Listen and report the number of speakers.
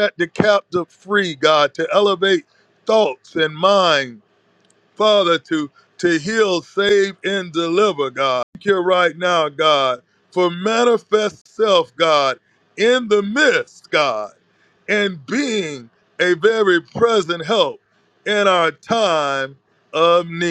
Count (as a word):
one